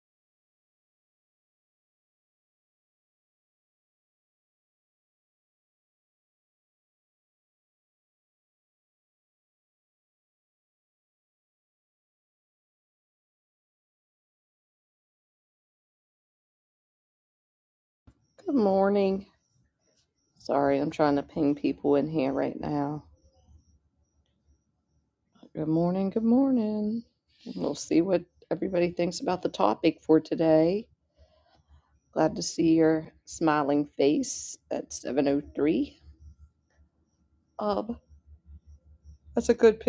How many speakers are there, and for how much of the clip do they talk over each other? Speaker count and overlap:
1, no overlap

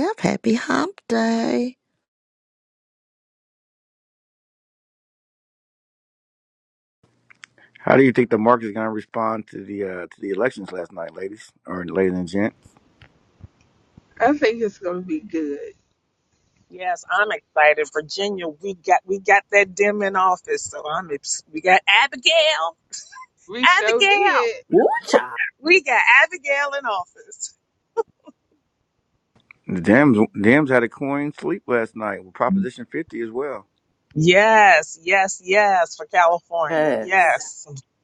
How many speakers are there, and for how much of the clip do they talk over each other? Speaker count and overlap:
5, about 3%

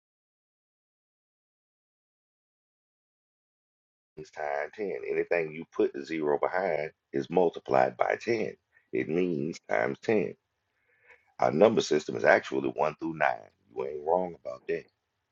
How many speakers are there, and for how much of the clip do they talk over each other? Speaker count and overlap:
1, no overlap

